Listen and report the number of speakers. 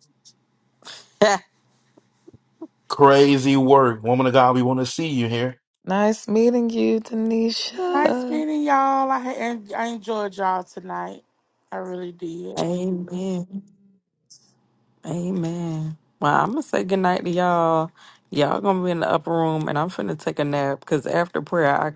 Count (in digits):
4